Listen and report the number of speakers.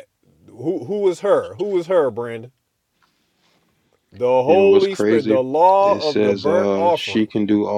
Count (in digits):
2